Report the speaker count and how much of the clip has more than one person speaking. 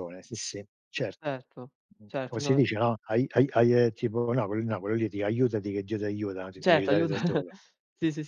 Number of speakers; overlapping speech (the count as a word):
two, about 13%